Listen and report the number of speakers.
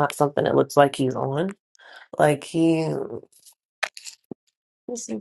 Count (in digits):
1